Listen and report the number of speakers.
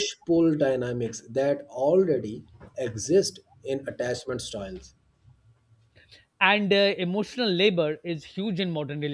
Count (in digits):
2